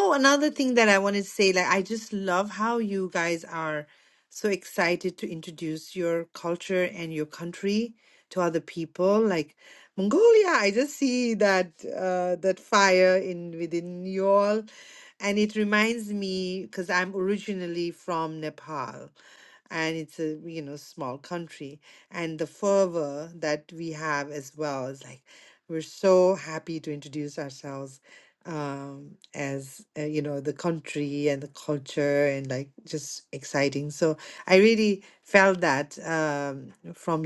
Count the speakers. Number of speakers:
1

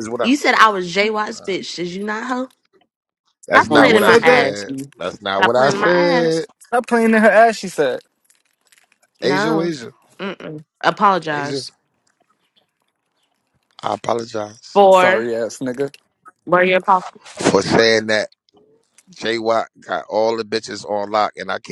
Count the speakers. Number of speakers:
3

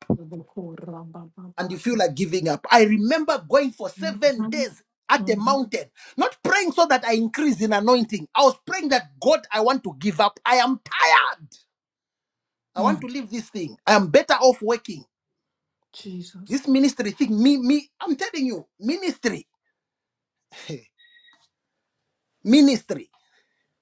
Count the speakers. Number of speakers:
2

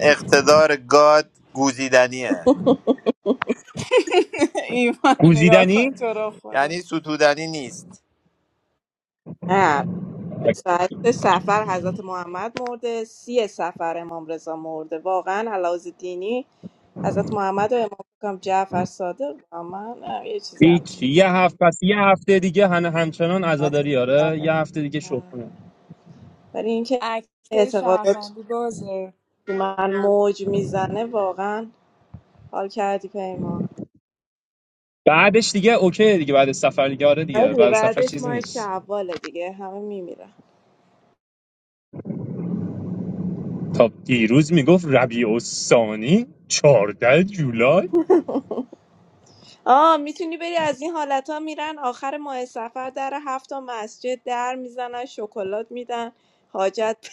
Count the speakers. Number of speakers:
4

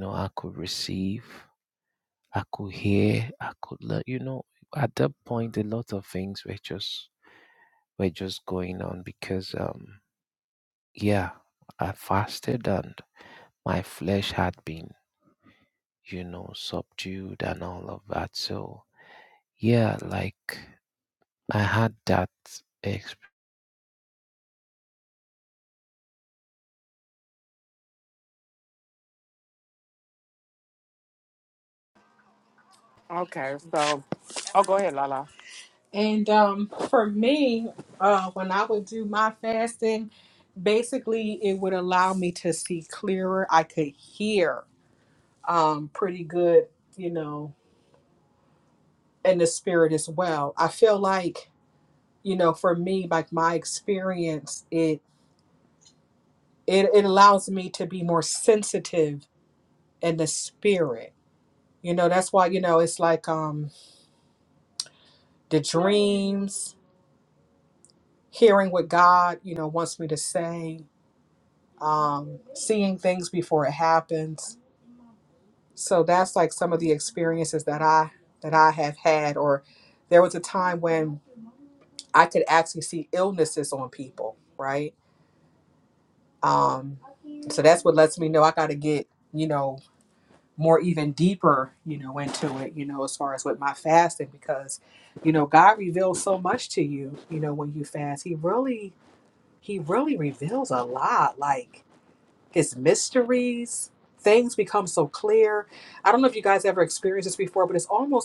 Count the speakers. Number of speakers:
3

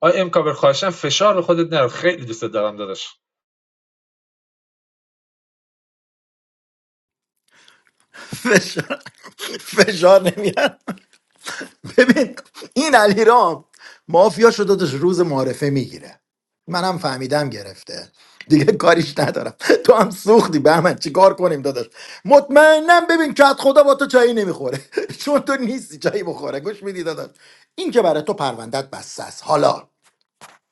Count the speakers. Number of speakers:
2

